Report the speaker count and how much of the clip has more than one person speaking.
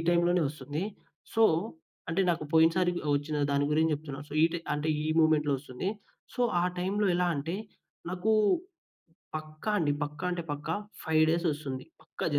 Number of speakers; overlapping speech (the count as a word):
one, no overlap